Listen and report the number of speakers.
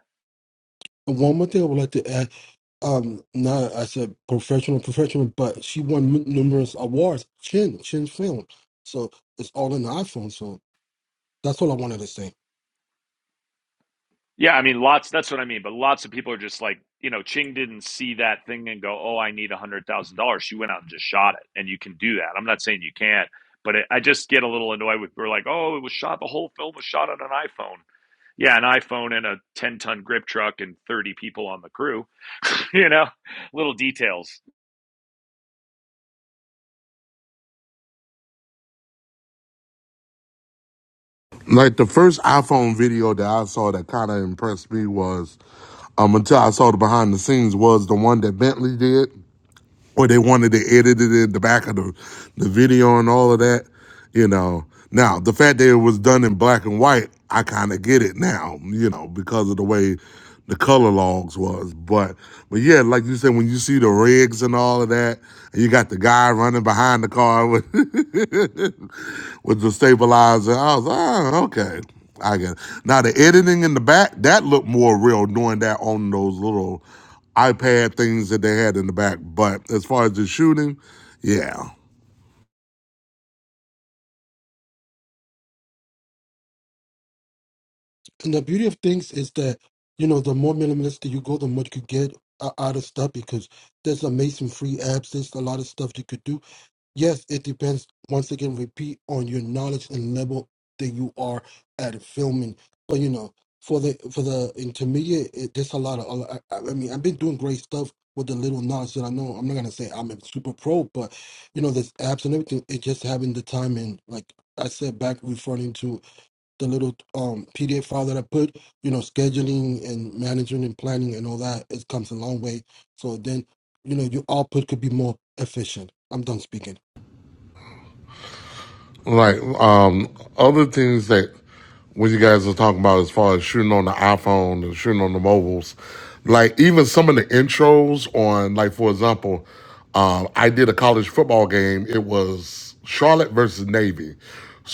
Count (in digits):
3